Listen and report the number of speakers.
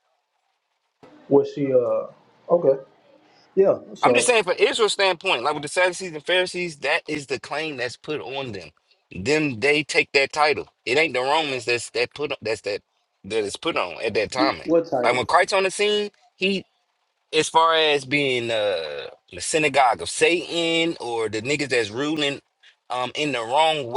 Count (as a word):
two